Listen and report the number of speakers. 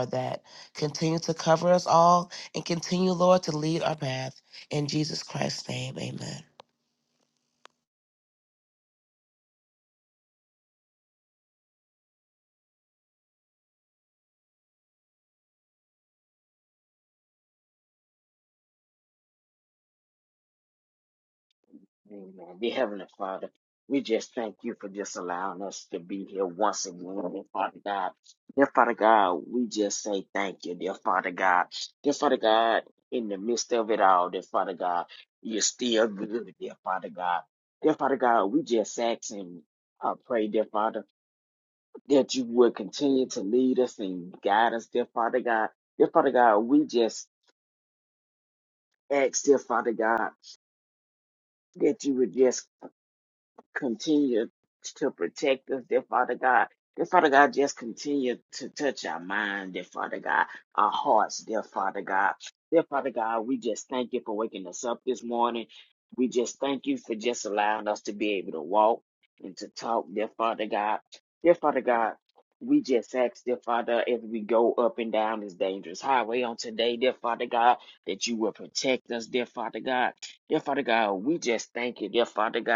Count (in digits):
2